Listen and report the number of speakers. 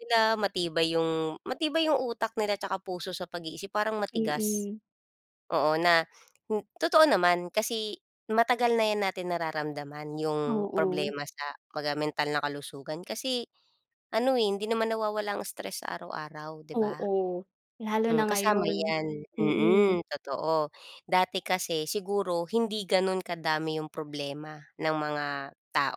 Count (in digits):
2